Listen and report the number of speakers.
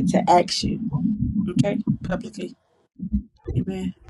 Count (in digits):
1